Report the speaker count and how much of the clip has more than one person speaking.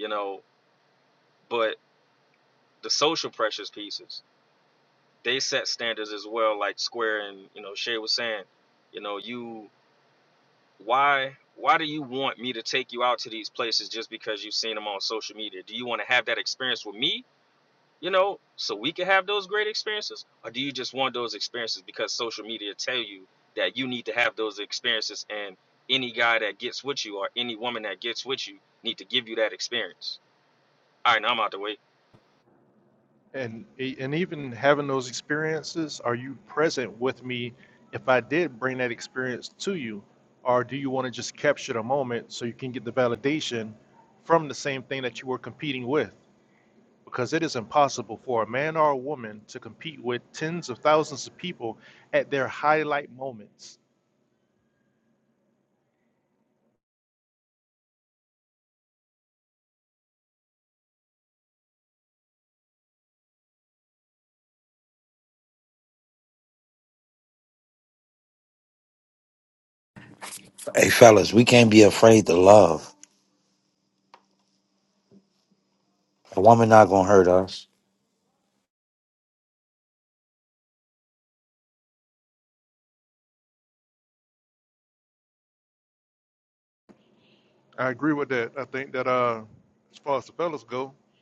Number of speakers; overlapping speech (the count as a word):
three, no overlap